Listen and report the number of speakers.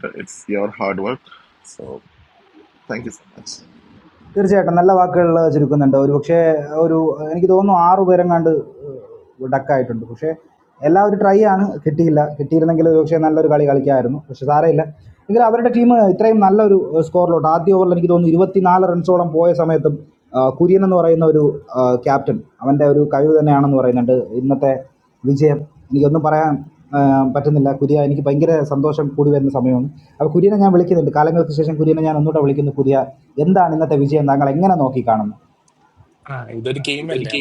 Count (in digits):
3